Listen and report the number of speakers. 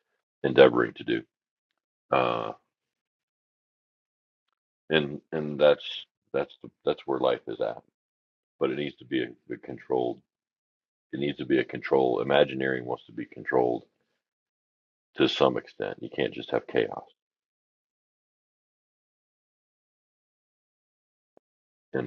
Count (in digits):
1